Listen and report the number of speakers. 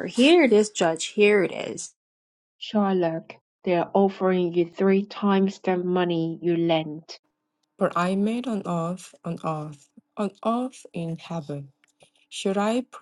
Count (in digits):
3